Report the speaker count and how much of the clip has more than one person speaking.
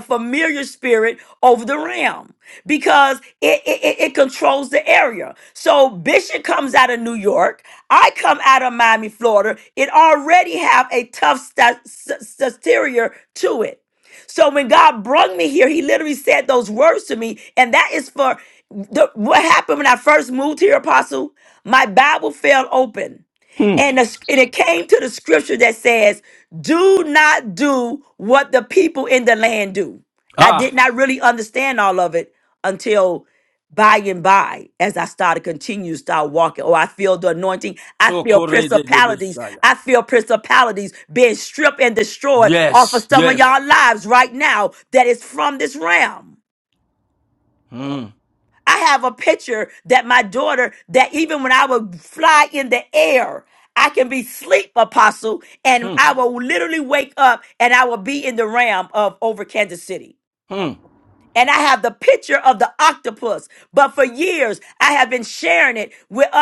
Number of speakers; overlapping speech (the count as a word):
two, about 4%